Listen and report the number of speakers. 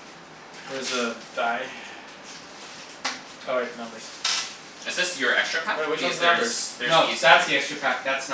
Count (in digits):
3